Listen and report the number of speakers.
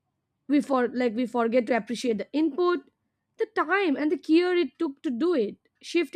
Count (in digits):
1